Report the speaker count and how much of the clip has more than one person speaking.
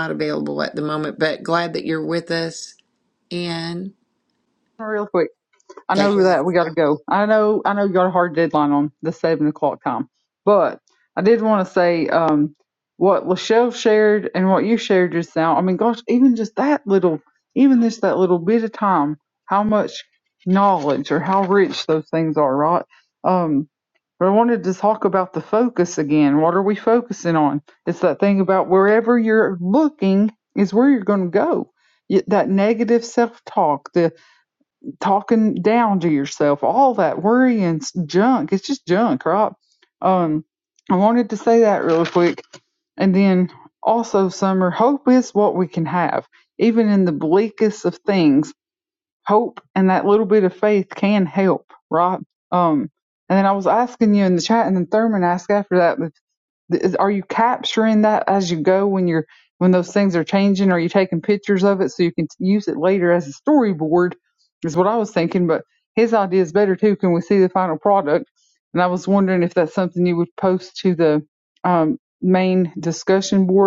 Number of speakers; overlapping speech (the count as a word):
two, about 1%